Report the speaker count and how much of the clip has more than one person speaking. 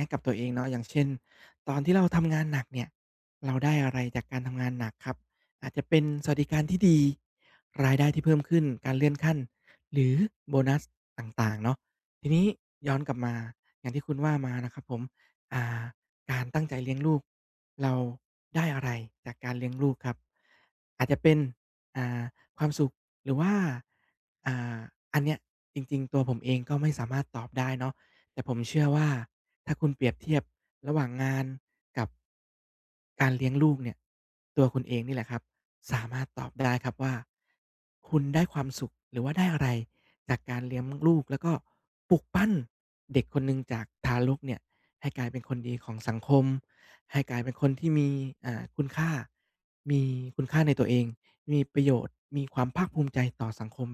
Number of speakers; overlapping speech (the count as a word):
one, no overlap